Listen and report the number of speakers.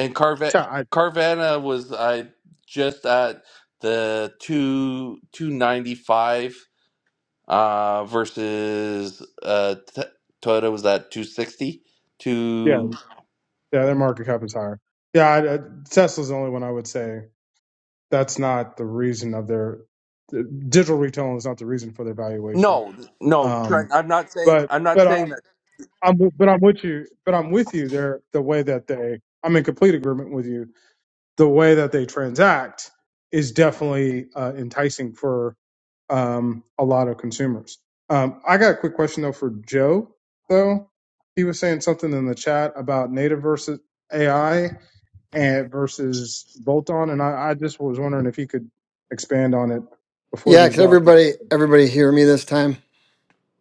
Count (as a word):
three